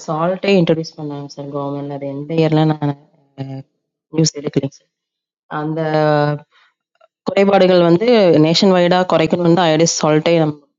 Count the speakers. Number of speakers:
one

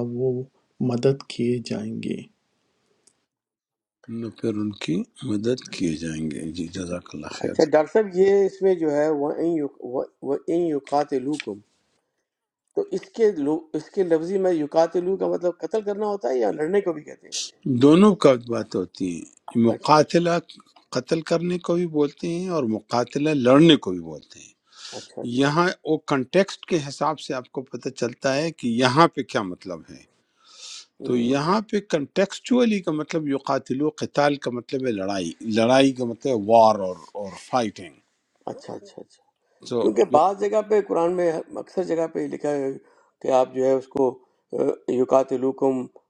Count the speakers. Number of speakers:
three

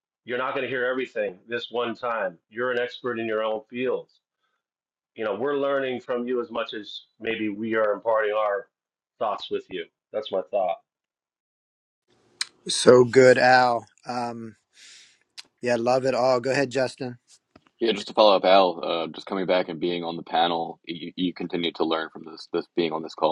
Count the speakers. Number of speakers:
three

